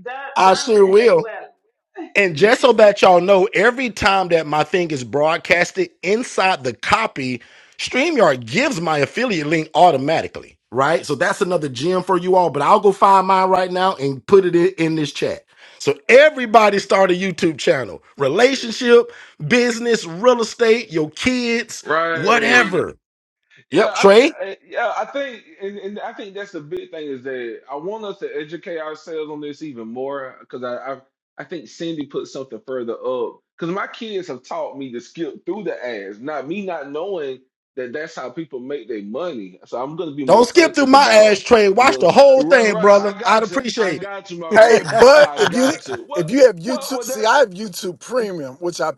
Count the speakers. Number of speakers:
4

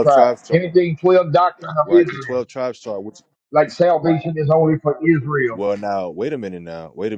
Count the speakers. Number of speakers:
2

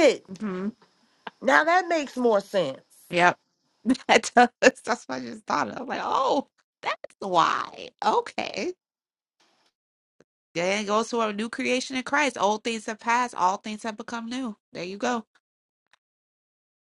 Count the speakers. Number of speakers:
2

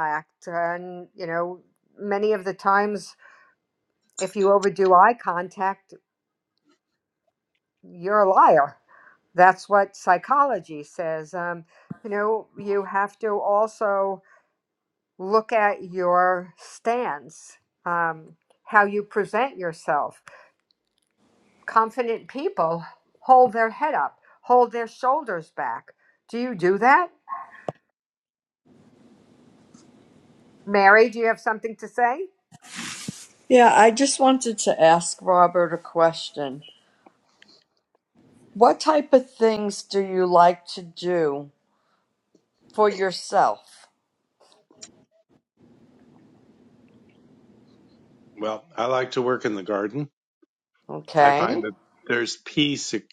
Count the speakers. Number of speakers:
3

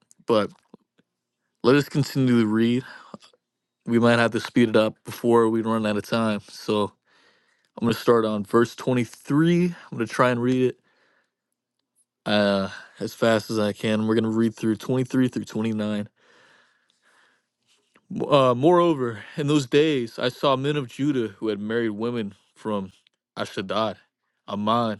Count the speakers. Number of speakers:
1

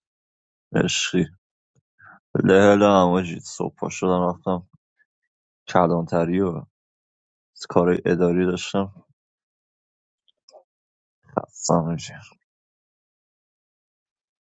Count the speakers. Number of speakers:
1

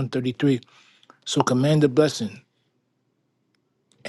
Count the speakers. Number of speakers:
1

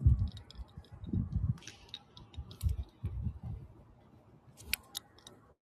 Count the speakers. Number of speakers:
0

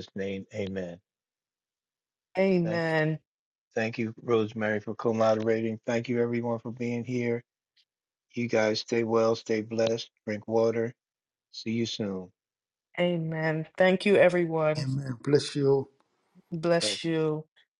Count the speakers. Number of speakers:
3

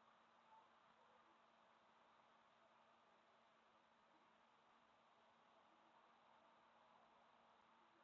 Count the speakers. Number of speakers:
0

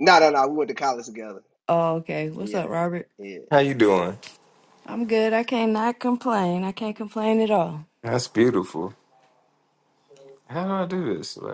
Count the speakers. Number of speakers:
3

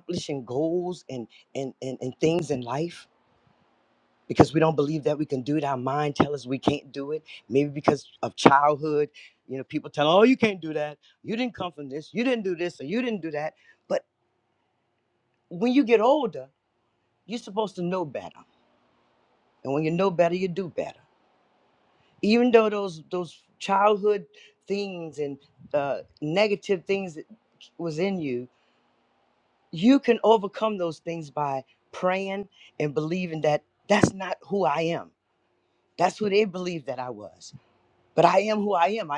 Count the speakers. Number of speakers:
1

